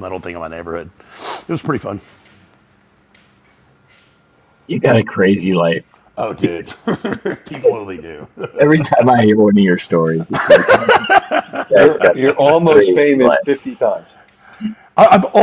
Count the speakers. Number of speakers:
3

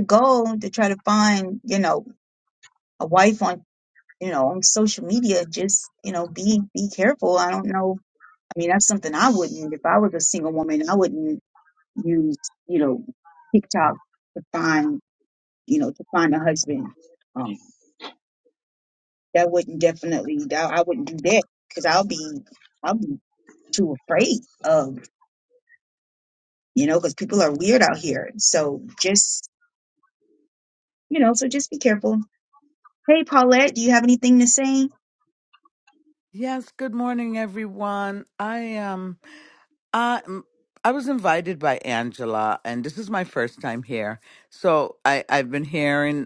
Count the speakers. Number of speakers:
2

